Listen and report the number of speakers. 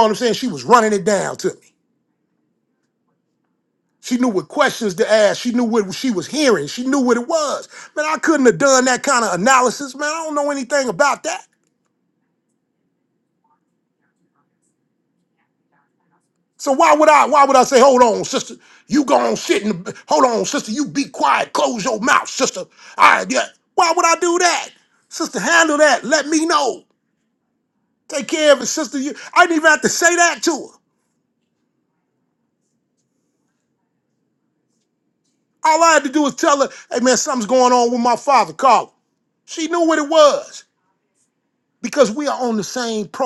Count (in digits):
1